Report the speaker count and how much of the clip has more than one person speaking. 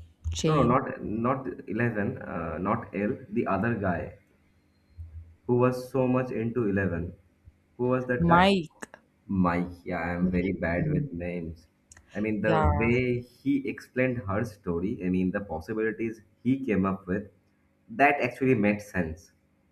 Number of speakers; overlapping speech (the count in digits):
2, about 10%